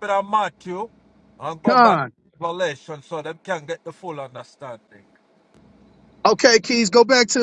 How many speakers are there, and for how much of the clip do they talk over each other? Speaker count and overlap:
2, about 4%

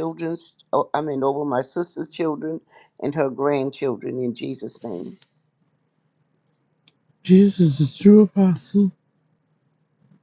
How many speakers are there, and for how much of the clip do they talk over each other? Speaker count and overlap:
2, no overlap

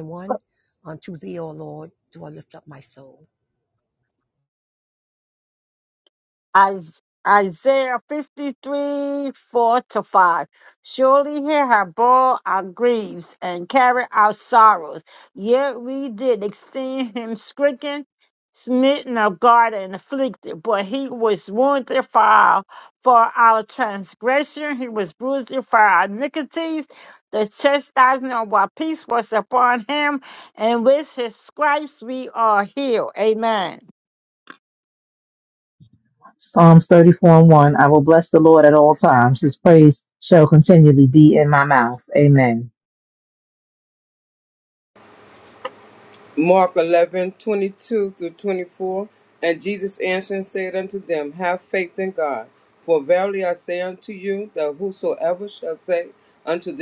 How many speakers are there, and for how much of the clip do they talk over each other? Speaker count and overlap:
4, no overlap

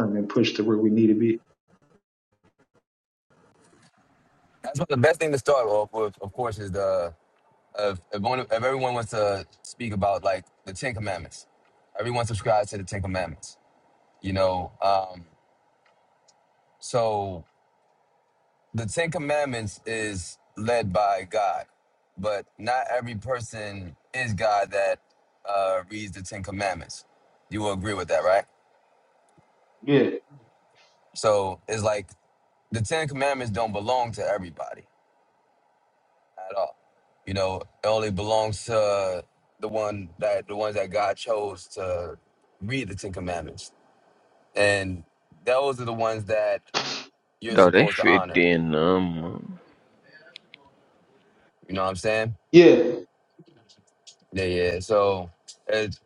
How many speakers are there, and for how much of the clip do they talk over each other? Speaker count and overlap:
3, about 2%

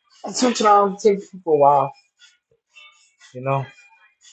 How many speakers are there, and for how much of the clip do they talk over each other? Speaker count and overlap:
1, no overlap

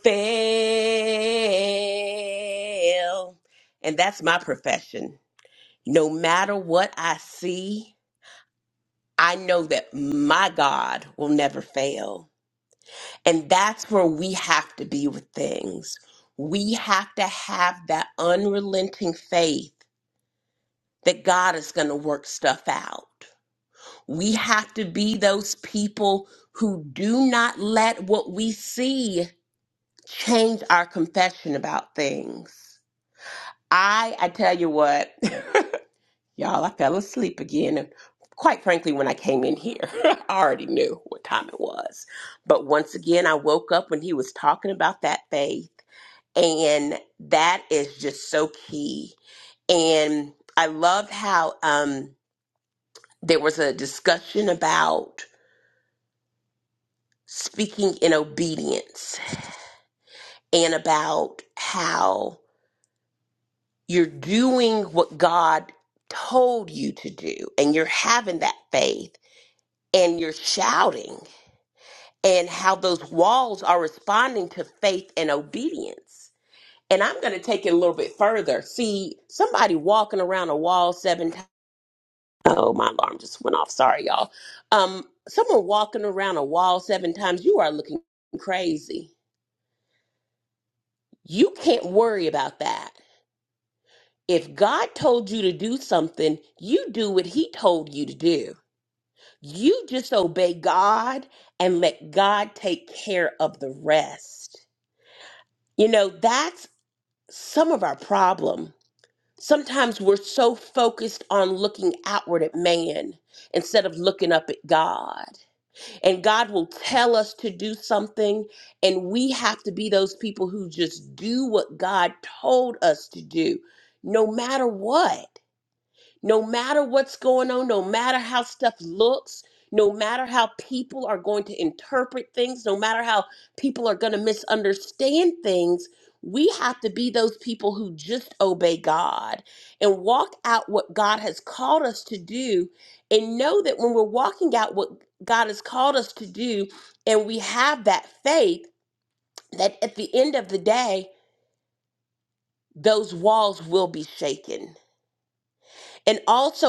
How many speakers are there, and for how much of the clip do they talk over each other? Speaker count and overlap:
1, no overlap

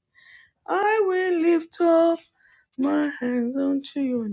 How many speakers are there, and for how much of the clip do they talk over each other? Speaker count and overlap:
1, no overlap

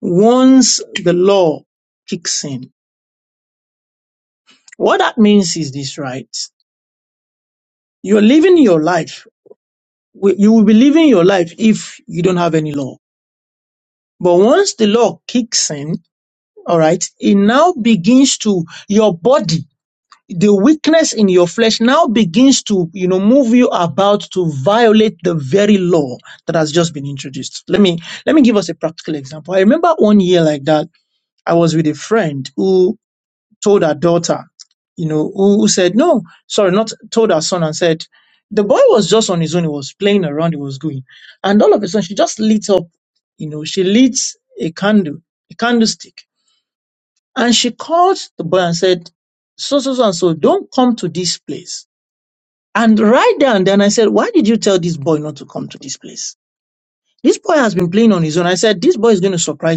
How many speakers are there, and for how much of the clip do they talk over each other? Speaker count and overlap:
1, no overlap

